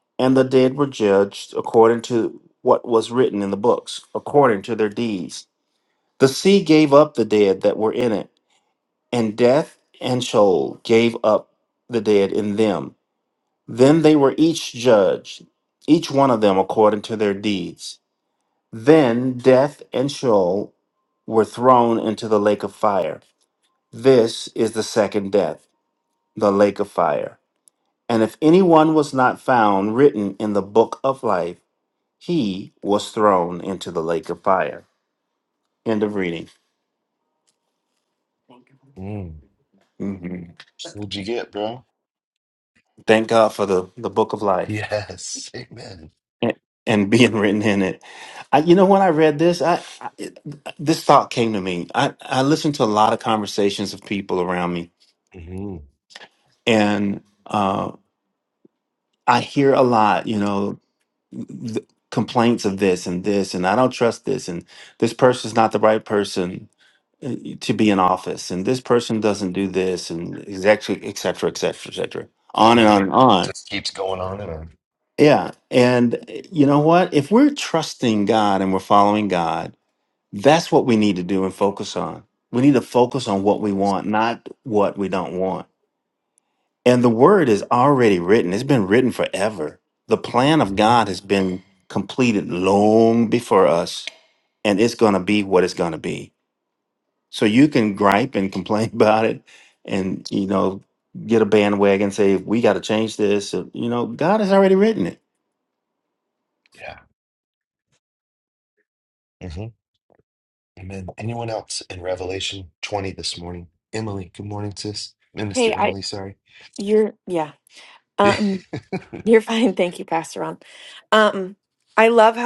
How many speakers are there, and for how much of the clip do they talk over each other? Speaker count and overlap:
three, about 1%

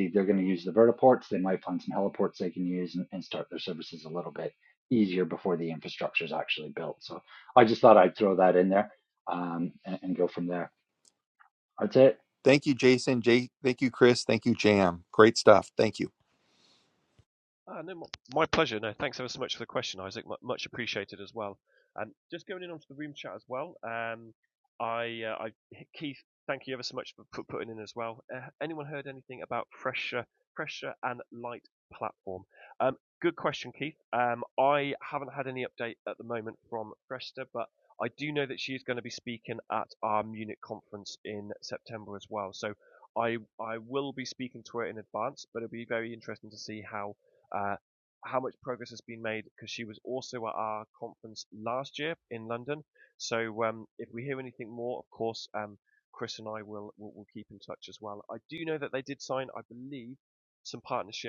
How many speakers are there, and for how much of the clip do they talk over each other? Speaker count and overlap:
three, no overlap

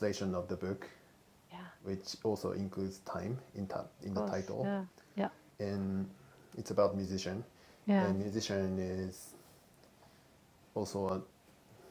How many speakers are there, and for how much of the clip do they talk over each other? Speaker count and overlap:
two, about 7%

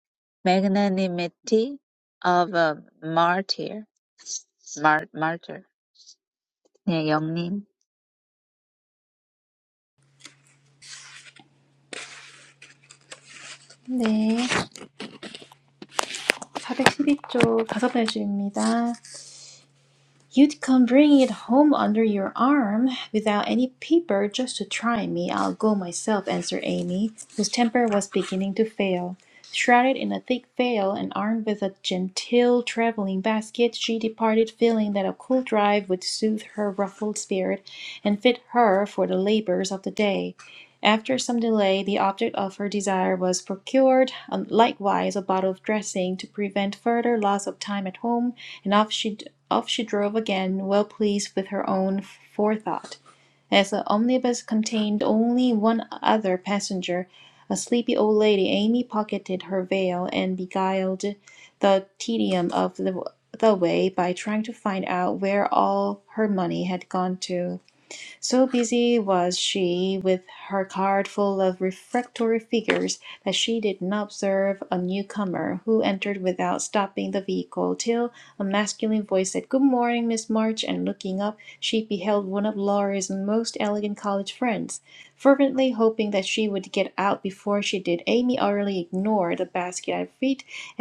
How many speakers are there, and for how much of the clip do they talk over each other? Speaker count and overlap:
two, no overlap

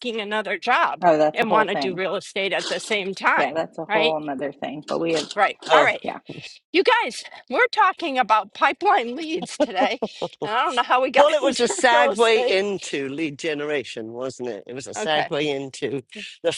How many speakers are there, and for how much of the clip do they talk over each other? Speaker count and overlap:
three, about 23%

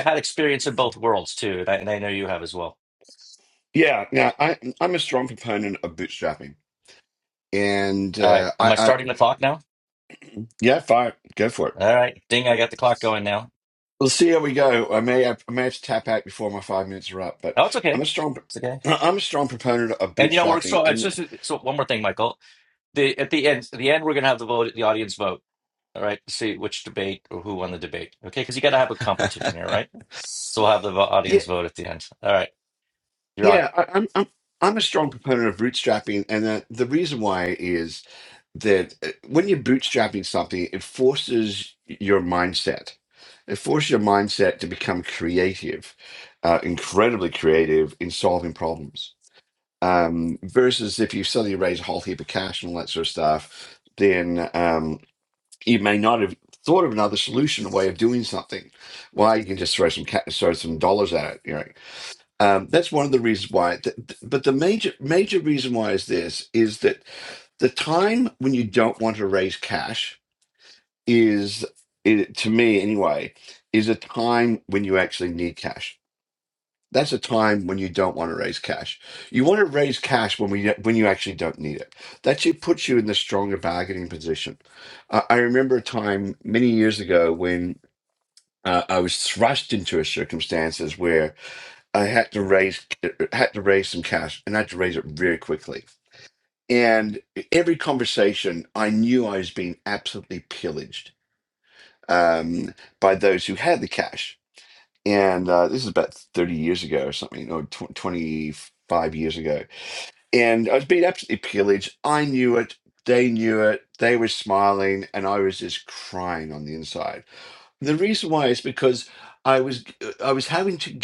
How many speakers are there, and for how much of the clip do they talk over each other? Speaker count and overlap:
two, about 2%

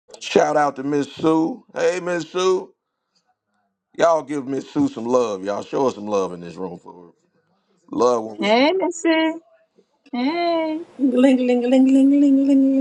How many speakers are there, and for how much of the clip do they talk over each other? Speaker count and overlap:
three, about 1%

